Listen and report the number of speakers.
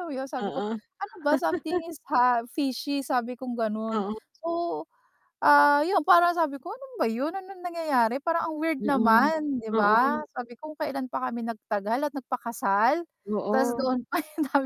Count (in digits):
2